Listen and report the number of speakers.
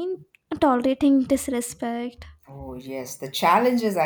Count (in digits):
2